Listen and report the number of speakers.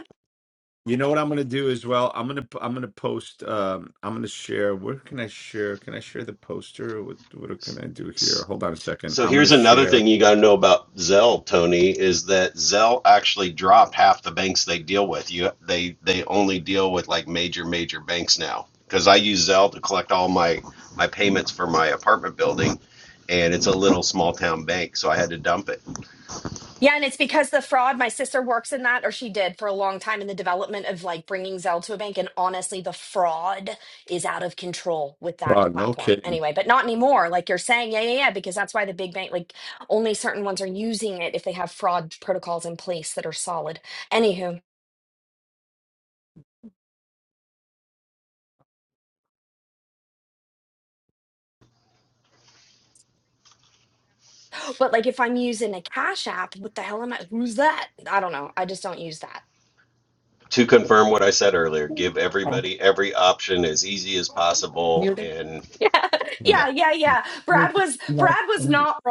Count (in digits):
3